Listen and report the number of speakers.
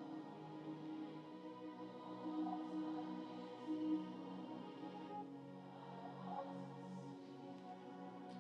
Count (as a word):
zero